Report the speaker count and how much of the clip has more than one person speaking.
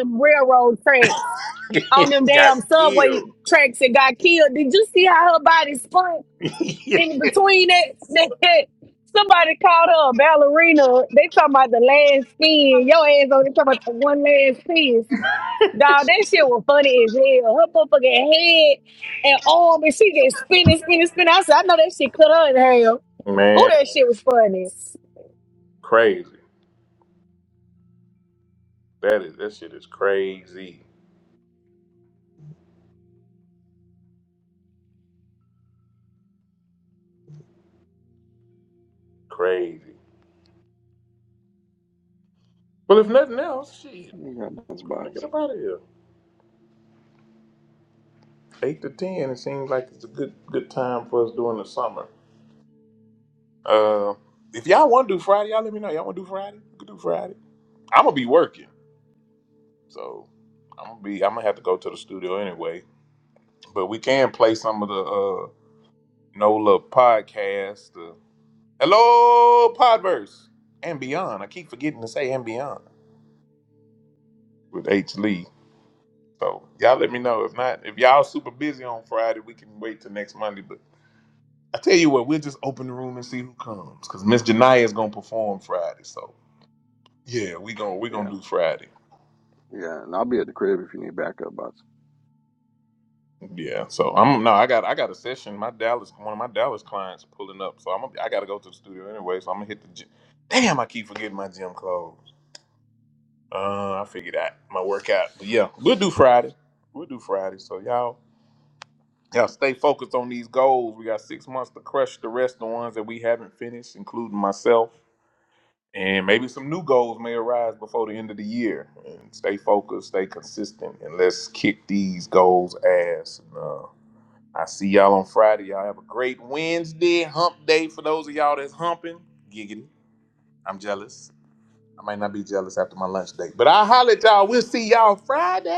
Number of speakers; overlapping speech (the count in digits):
3, about 1%